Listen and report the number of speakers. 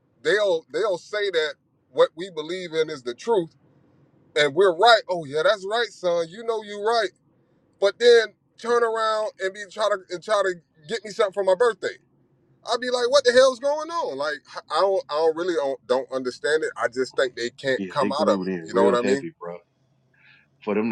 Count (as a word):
two